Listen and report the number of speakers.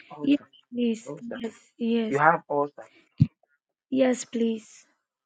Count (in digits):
2